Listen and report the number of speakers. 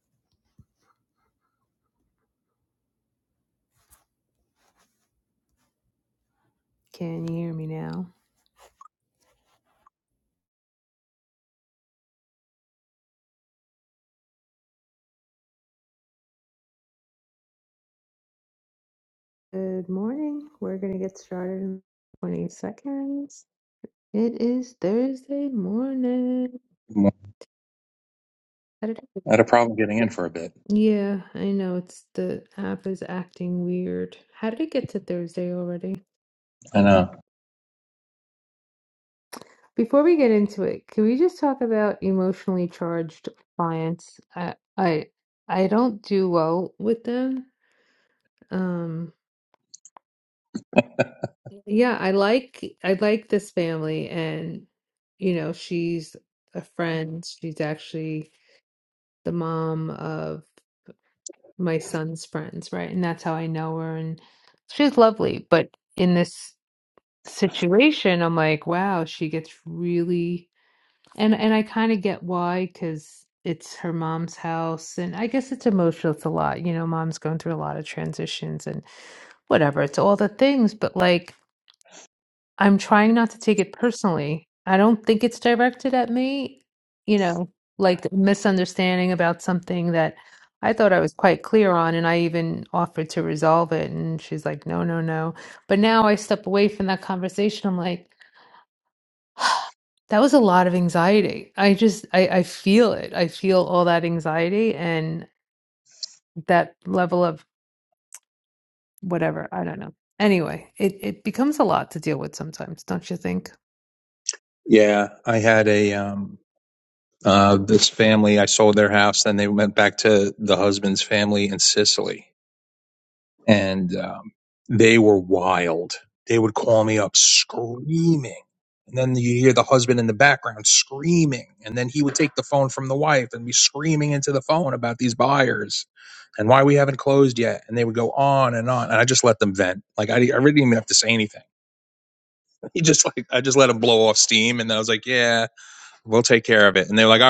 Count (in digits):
2